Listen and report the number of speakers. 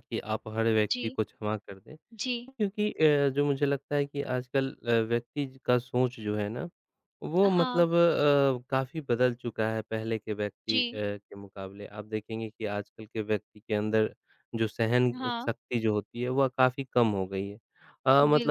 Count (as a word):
two